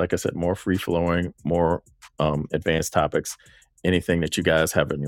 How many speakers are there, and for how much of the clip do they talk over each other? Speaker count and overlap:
1, no overlap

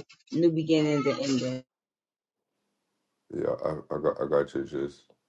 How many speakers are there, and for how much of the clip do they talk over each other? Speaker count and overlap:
2, no overlap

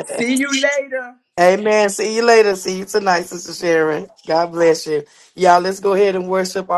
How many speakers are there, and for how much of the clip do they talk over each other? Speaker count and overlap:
2, no overlap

